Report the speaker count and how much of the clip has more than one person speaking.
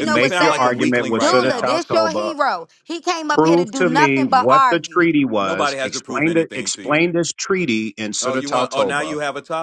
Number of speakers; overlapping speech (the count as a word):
three, about 68%